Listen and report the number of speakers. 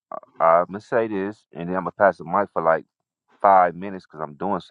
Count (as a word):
one